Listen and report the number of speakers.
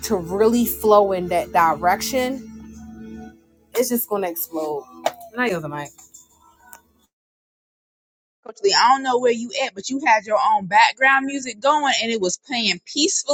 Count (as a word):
two